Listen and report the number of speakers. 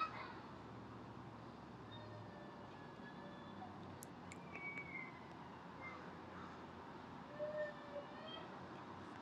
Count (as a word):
zero